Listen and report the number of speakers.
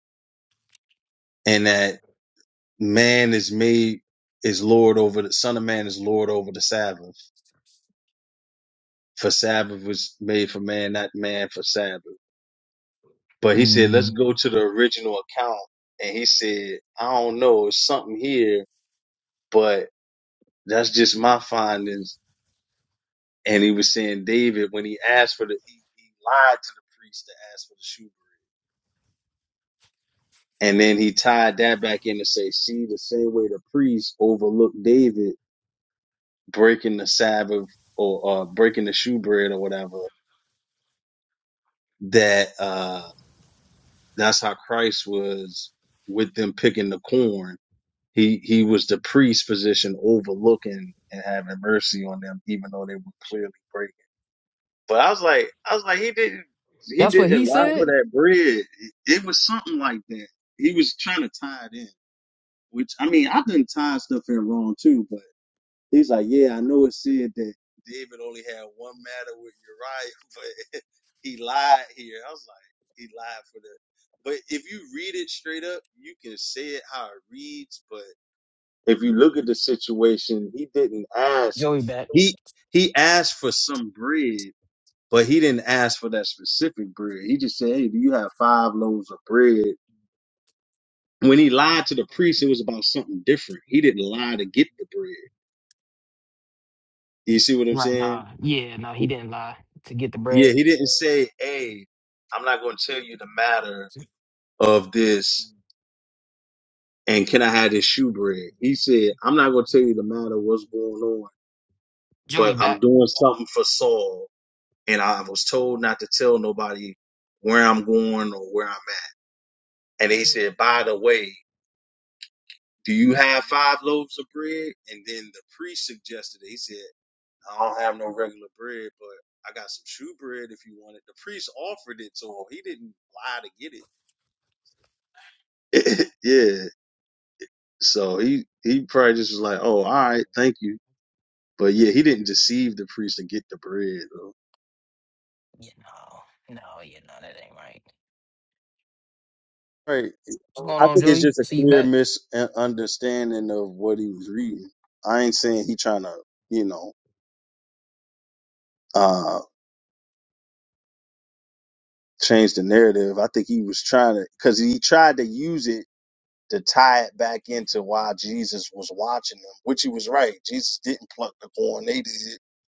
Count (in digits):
2